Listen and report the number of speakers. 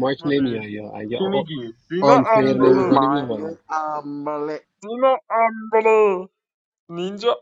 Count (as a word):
three